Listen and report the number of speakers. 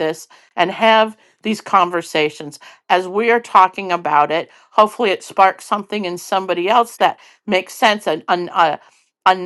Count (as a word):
one